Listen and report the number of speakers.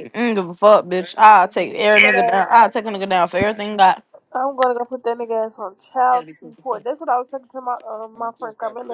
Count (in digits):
2